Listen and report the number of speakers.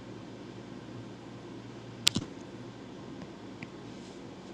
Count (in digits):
0